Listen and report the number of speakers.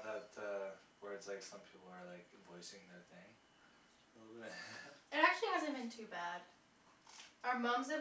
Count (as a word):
two